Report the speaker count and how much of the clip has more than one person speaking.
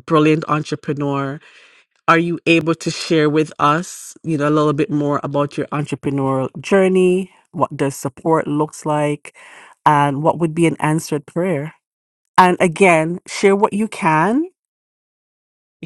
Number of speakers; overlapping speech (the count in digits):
1, no overlap